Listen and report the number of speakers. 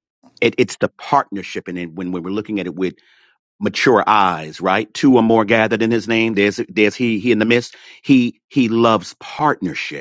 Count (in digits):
1